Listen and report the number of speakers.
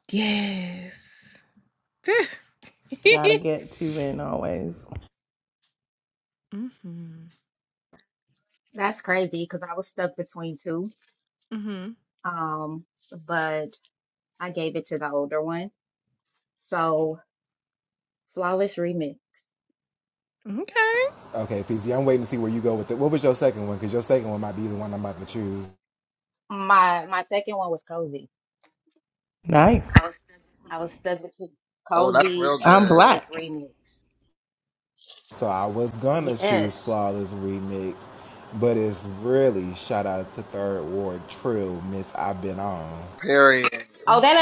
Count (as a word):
five